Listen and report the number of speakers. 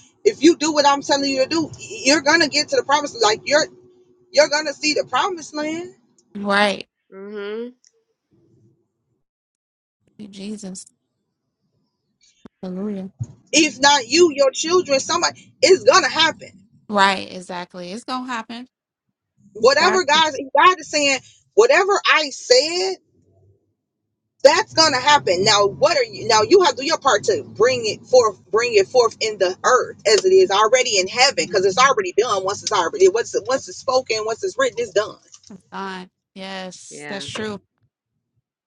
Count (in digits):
3